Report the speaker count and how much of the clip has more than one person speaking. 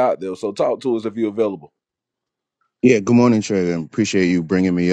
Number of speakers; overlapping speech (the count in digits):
2, no overlap